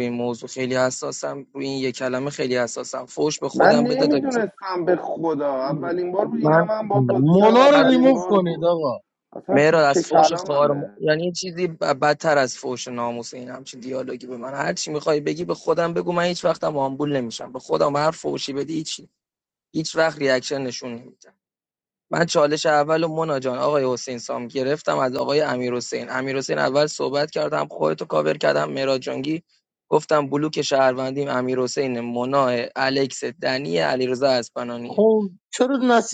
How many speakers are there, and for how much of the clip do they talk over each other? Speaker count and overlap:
3, about 12%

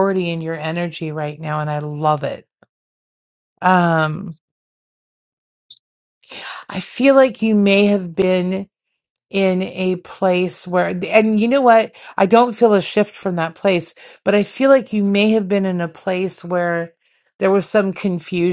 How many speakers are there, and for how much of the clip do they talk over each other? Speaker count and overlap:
1, no overlap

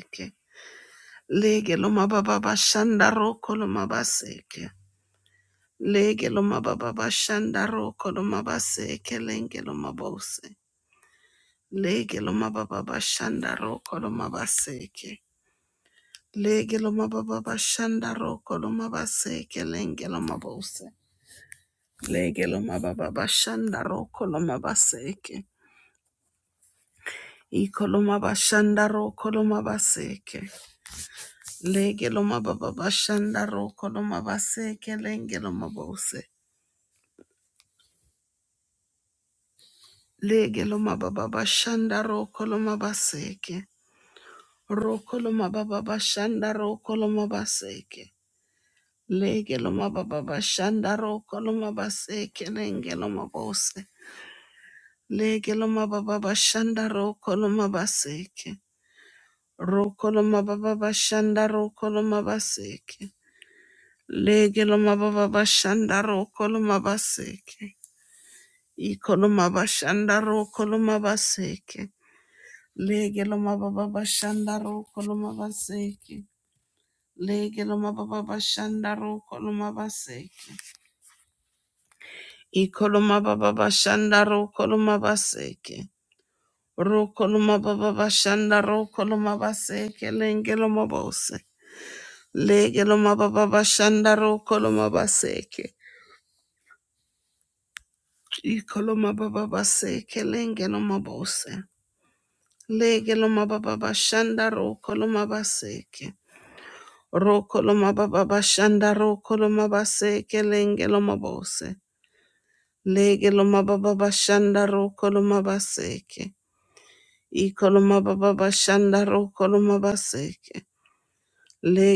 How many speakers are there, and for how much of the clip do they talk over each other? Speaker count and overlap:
1, no overlap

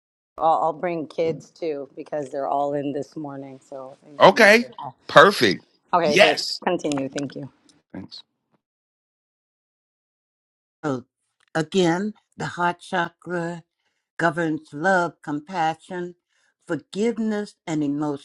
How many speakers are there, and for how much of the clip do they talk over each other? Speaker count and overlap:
3, about 4%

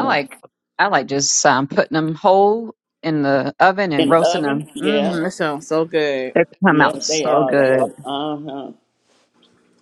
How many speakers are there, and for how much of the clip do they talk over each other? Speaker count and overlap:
3, about 25%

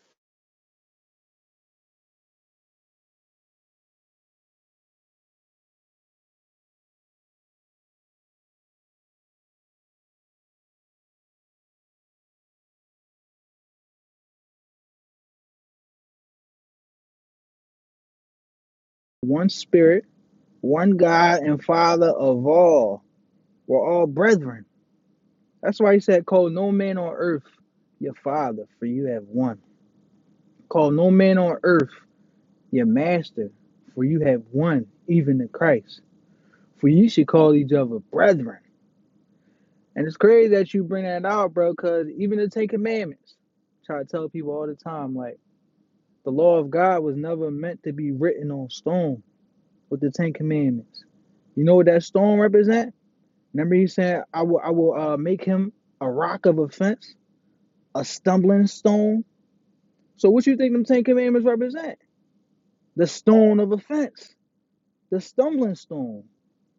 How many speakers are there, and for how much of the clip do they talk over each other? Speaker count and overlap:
1, no overlap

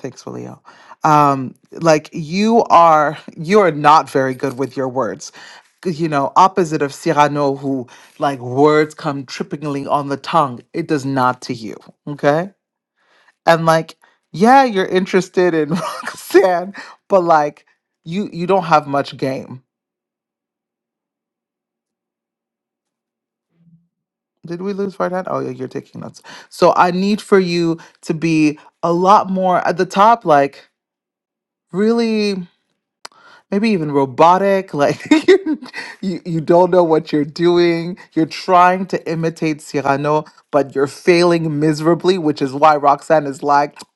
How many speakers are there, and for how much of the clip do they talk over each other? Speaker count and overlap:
1, no overlap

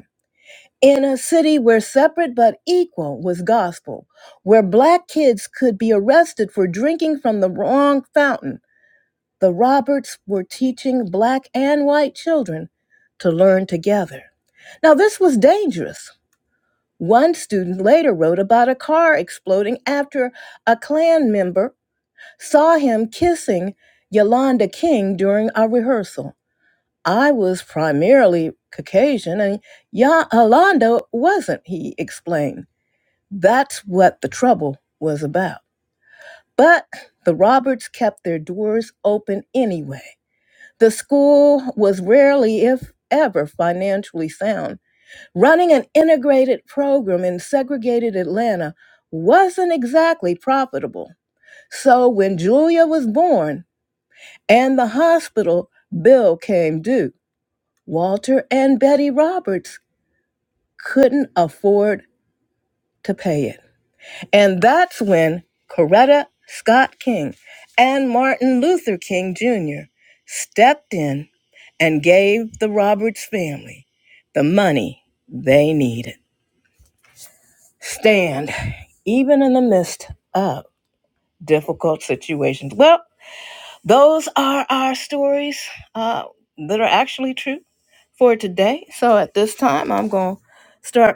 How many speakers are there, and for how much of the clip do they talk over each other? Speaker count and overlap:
1, no overlap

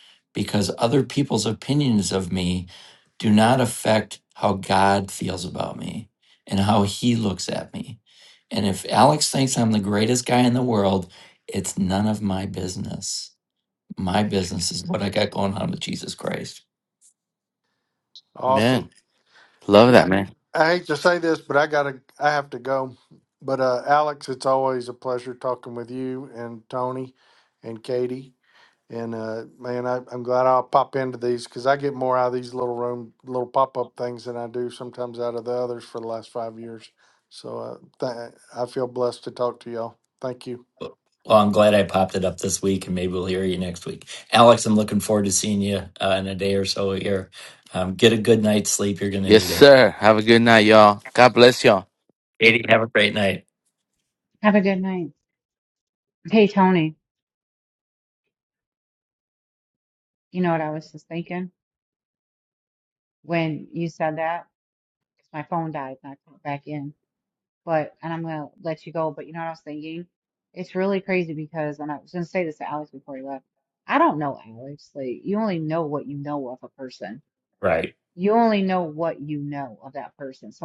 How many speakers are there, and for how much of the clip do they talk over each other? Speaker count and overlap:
4, about 1%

